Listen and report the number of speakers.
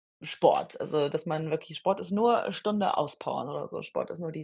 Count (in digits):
1